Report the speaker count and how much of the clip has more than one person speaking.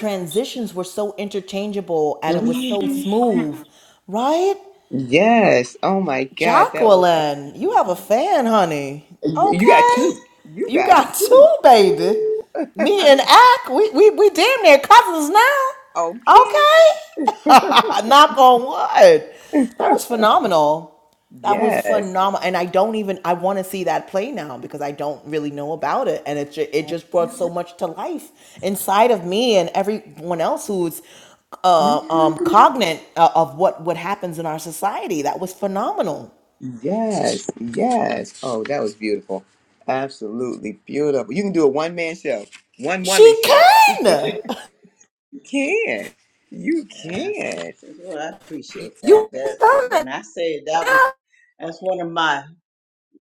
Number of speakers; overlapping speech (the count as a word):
three, about 15%